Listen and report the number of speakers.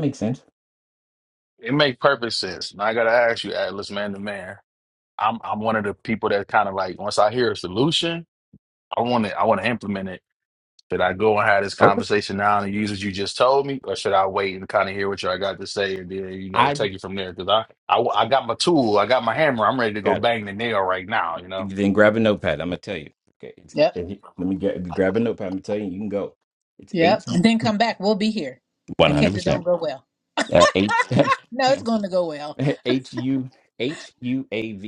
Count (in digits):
3